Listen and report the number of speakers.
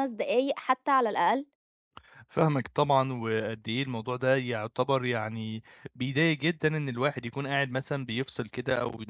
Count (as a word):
two